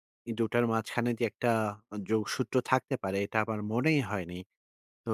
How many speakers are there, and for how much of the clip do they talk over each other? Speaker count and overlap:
one, no overlap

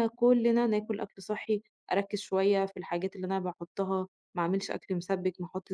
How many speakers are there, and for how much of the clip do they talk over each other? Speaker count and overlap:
one, no overlap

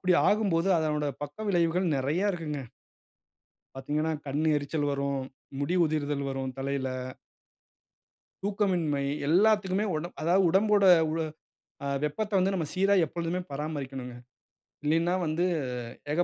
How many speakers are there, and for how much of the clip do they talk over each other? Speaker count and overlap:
one, no overlap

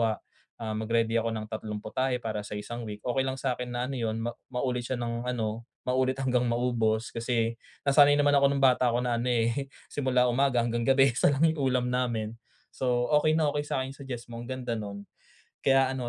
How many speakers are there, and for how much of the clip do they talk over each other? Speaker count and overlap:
one, no overlap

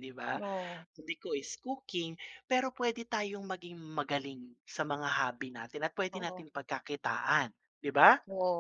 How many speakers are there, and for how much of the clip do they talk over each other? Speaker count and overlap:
two, about 4%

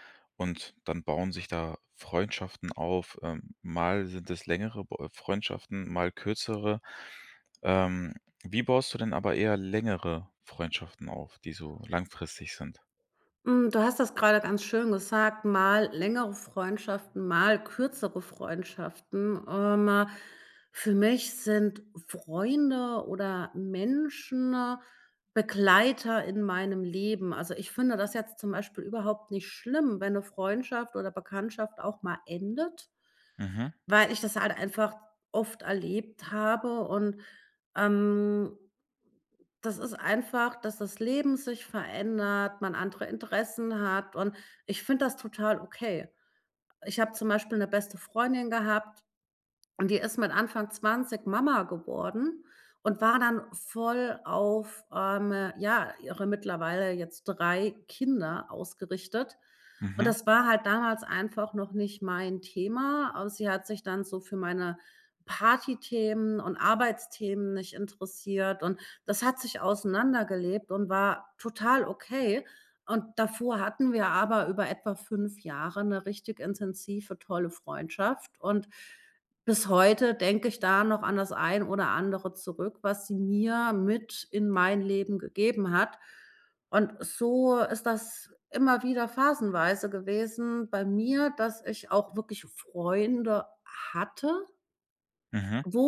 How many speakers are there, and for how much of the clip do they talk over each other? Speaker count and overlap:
two, under 1%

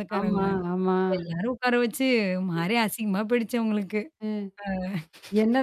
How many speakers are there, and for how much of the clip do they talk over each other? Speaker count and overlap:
two, about 6%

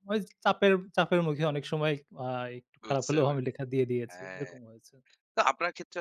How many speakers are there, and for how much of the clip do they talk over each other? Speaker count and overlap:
two, about 17%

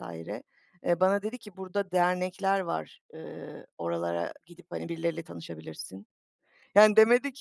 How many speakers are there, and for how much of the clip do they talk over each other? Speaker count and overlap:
one, no overlap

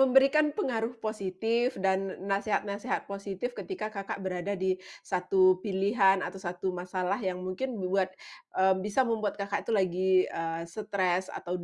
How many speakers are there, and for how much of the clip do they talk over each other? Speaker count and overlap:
one, no overlap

